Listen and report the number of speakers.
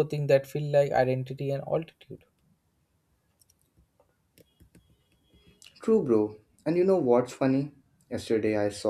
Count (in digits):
2